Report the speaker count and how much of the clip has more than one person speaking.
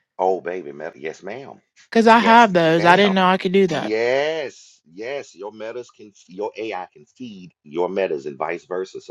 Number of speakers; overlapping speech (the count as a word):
two, about 14%